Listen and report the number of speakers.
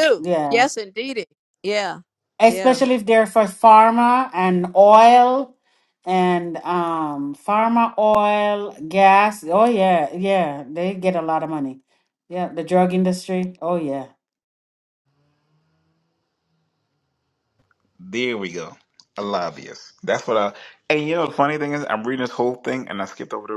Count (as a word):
three